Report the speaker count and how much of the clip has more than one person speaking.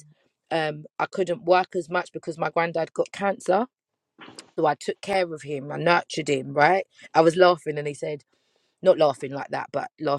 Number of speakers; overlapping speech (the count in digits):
1, no overlap